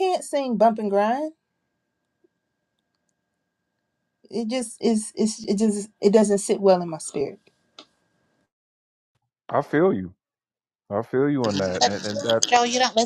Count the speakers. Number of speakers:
3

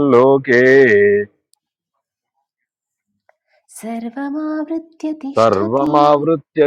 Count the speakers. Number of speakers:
2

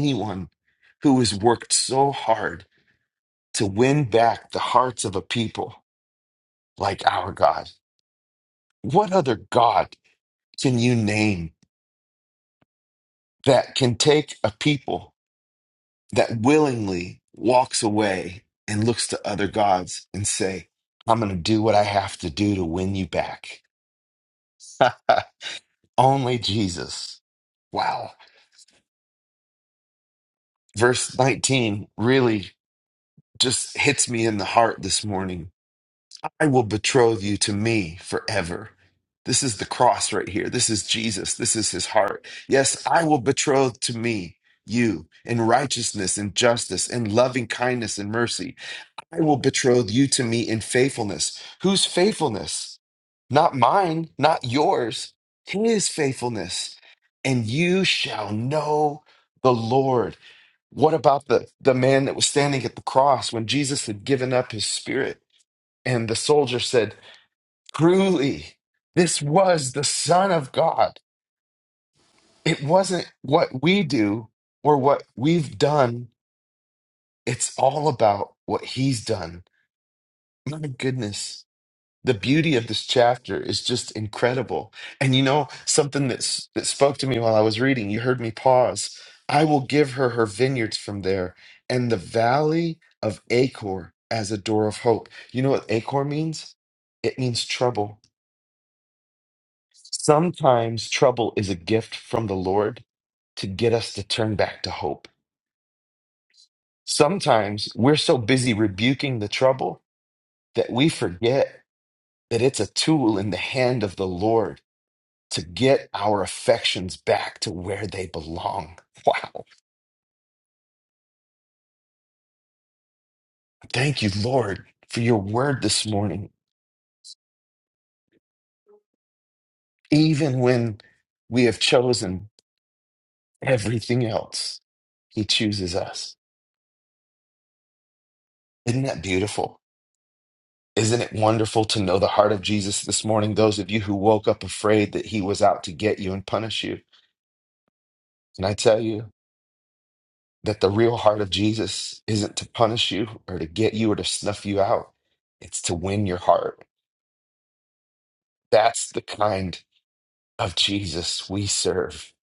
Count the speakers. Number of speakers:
1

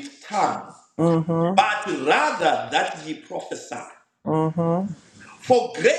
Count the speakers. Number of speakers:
2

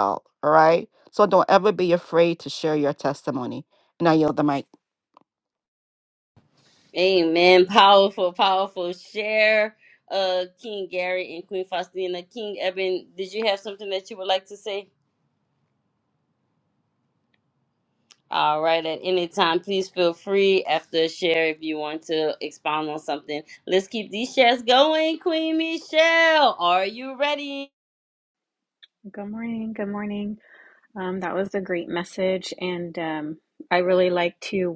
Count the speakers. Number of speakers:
3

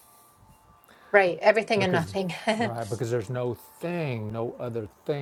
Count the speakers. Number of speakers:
2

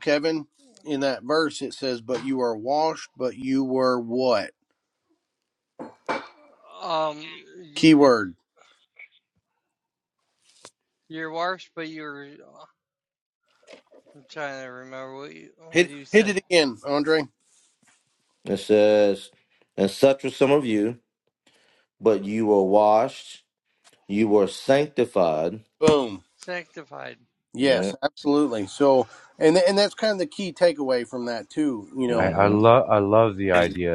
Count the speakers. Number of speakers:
4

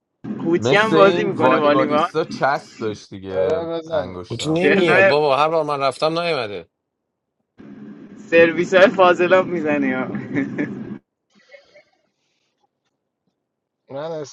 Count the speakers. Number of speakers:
4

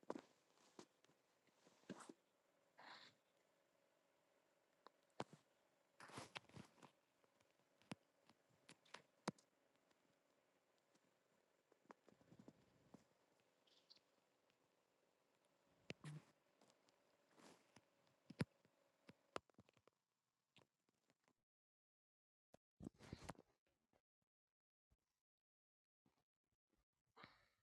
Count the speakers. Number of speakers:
0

